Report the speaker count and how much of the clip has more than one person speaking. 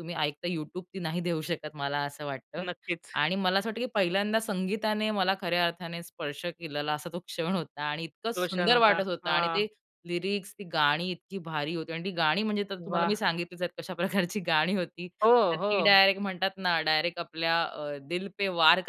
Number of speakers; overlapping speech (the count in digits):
2, about 12%